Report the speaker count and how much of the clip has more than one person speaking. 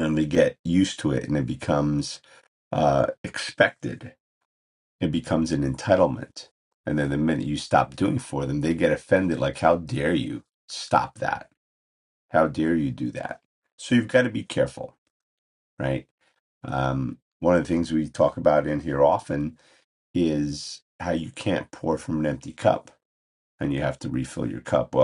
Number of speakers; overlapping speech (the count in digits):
1, no overlap